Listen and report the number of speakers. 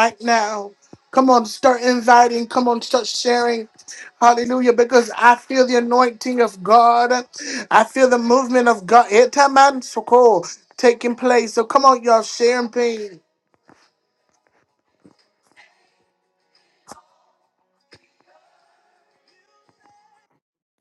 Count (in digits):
1